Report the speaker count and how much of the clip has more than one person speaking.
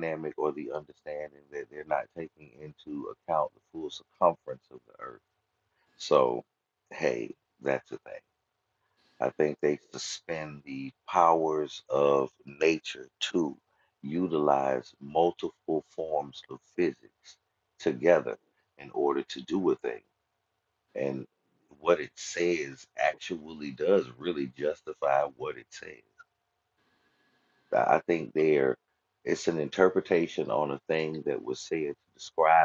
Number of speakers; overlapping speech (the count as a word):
one, no overlap